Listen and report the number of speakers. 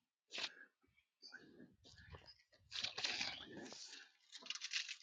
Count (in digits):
0